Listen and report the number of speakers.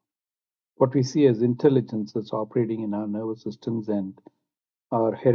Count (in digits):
1